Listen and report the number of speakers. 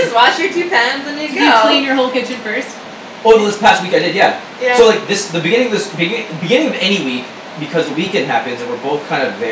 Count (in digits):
3